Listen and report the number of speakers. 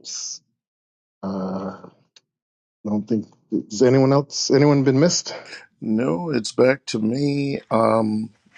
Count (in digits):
2